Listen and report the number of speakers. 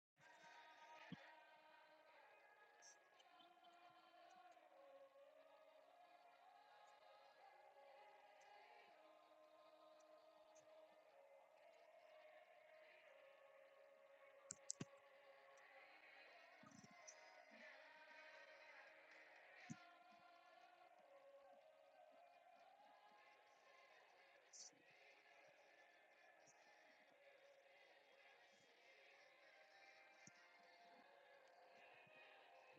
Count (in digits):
0